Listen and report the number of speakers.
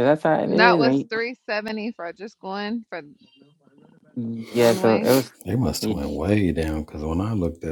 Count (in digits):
3